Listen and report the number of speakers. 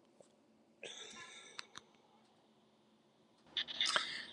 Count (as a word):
zero